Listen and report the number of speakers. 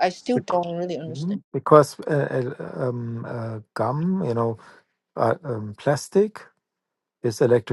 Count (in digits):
2